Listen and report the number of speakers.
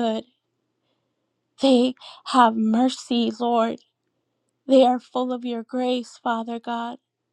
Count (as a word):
one